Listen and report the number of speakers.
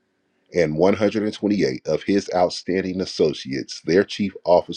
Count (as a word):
one